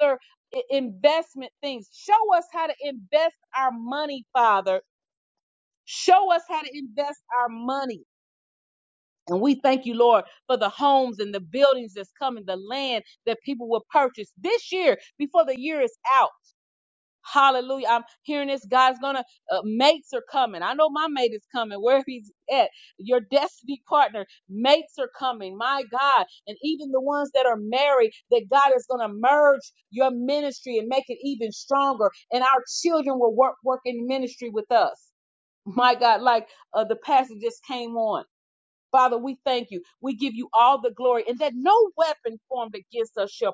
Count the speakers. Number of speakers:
1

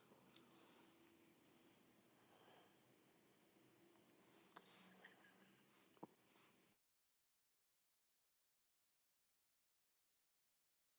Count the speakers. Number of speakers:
0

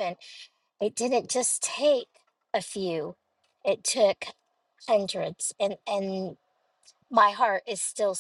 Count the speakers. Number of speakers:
1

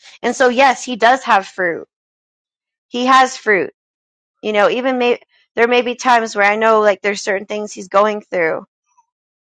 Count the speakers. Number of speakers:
1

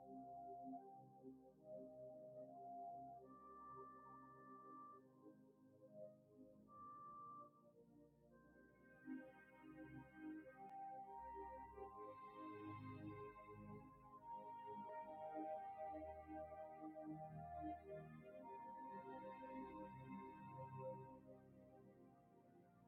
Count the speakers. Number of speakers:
0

